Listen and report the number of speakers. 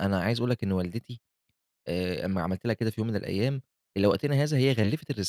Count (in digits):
1